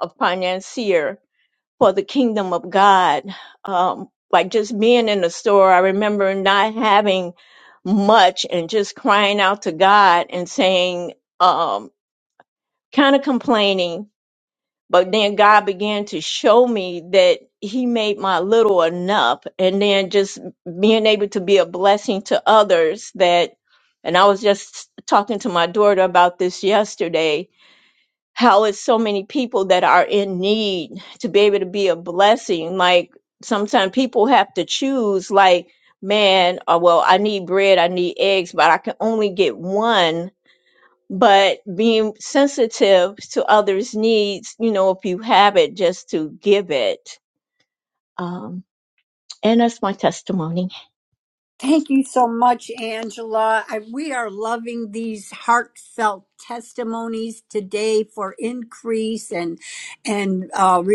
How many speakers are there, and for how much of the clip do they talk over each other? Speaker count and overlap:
2, no overlap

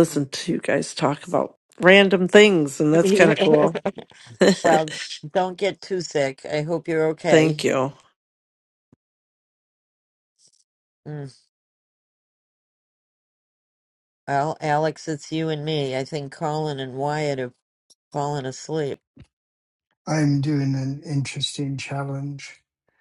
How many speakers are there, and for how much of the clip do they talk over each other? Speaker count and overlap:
3, about 1%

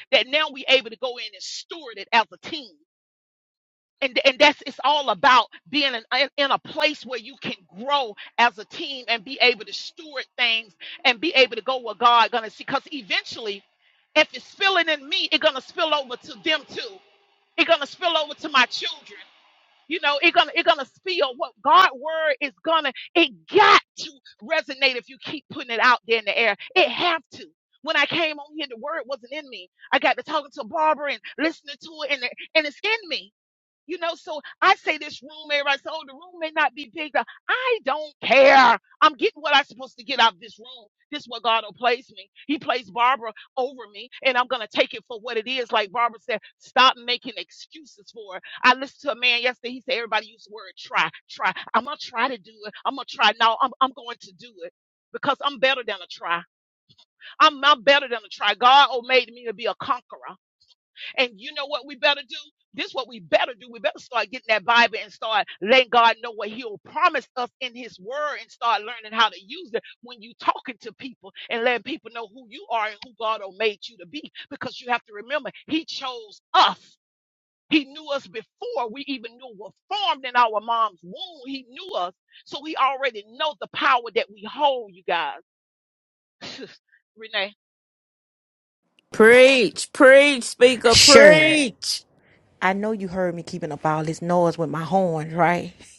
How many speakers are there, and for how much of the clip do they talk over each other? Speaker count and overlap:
3, about 1%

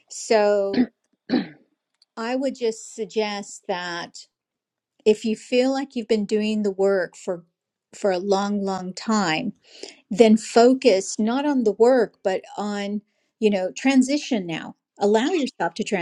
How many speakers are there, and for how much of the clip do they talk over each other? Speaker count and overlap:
1, no overlap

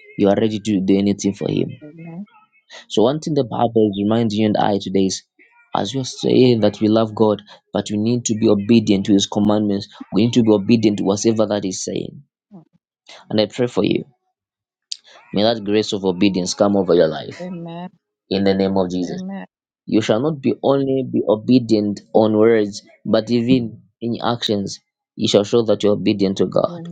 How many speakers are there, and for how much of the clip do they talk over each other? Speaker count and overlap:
2, about 1%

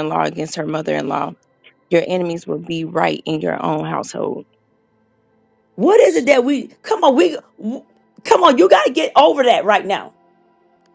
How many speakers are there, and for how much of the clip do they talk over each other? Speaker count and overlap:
2, no overlap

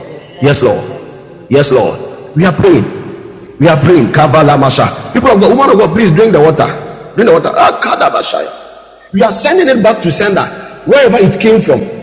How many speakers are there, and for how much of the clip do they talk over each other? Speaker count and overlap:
2, about 18%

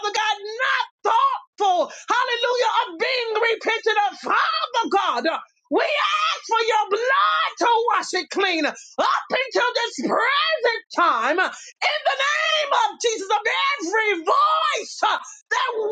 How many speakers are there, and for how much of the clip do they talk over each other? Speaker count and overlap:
1, no overlap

